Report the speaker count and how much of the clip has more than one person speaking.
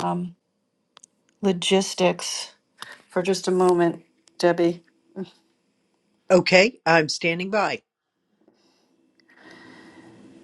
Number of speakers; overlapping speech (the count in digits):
2, no overlap